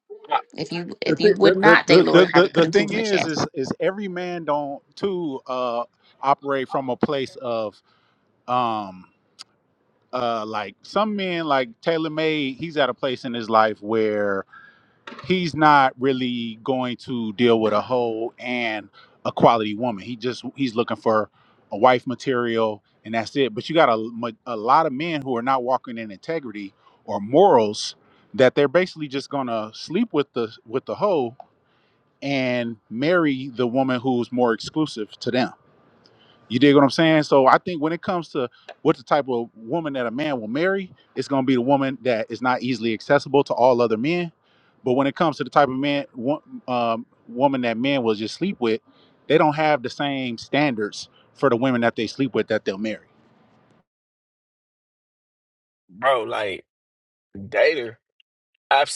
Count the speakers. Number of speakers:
three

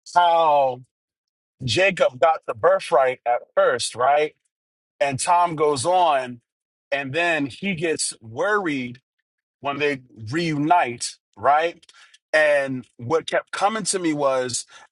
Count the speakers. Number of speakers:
one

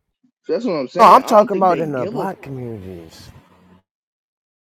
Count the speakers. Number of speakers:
two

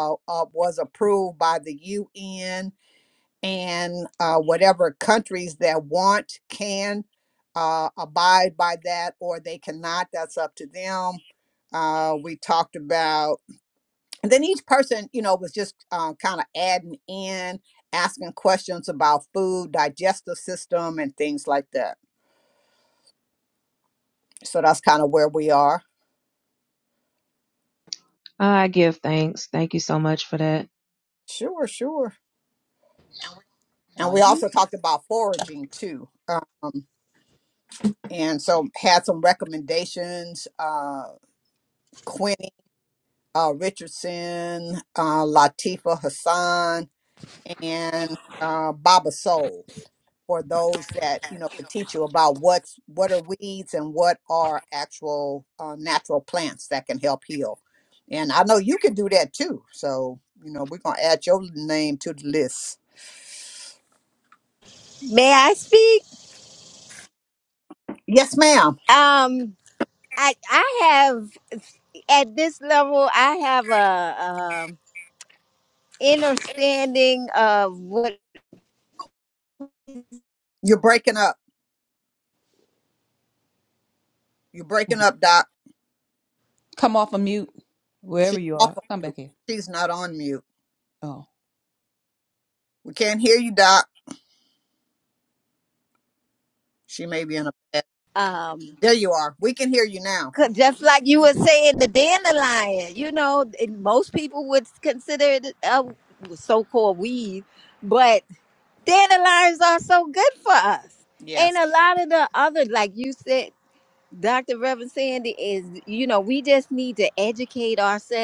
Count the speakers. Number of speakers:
four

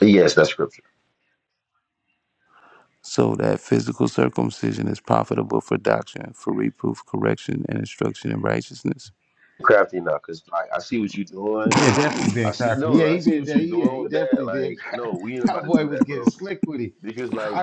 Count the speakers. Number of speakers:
three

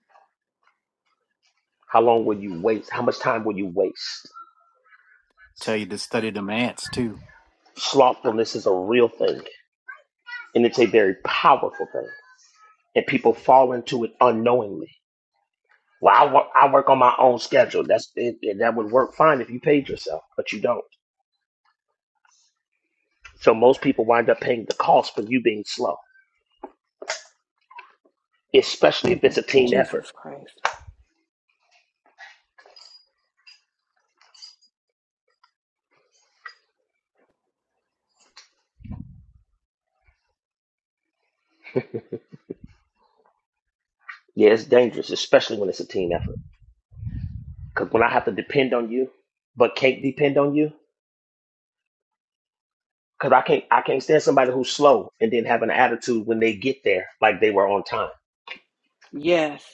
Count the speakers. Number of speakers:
three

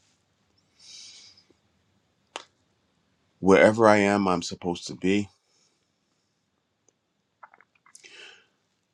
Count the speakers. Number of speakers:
one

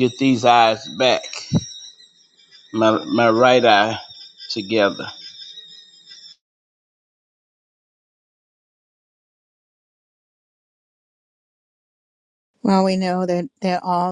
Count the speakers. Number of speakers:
two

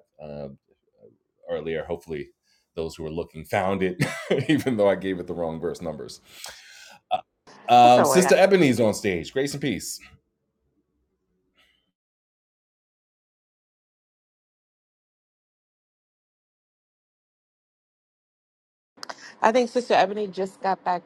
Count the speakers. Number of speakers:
two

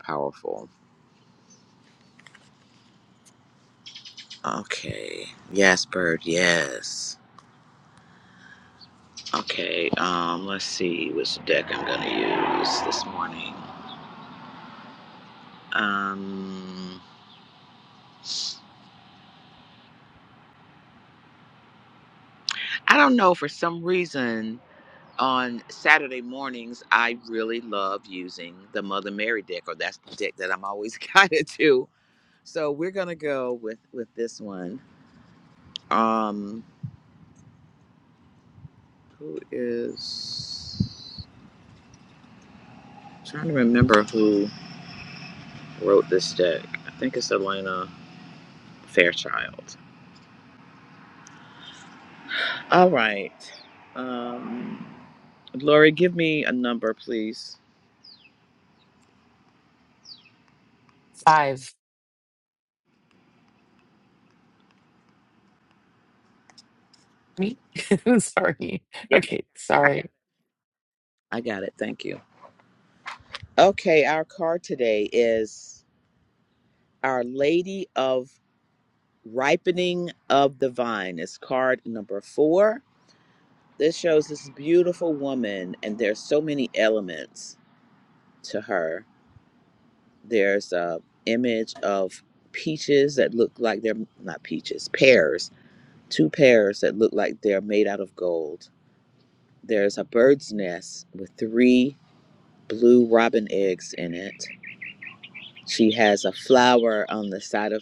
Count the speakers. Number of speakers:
two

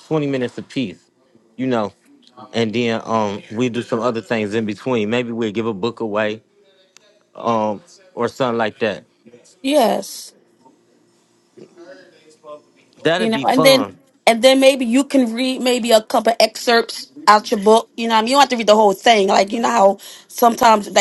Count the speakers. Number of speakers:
two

